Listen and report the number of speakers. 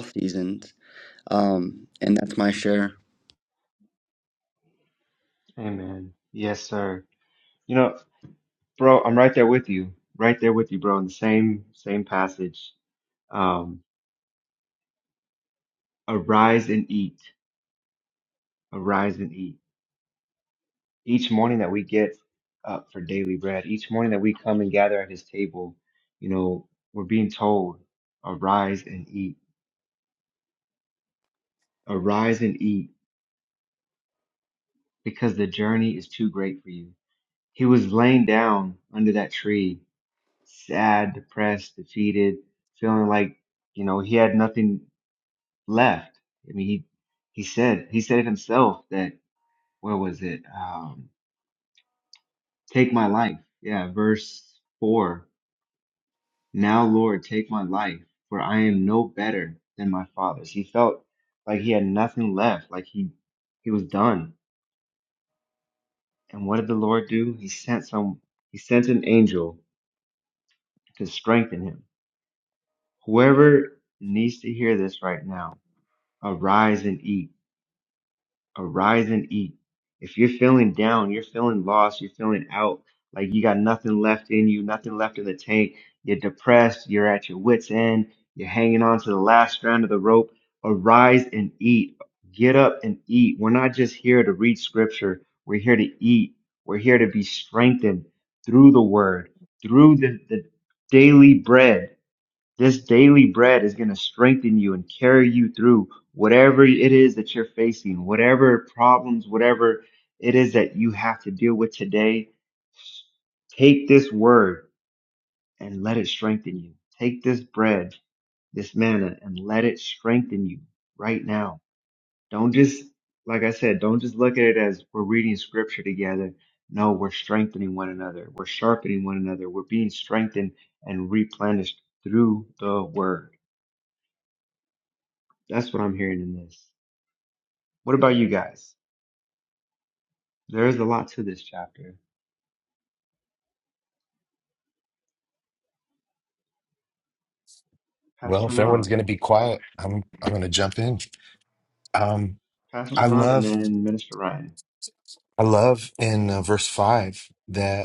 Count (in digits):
3